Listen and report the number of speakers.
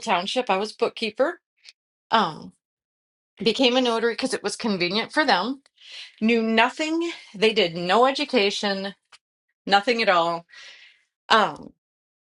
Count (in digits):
1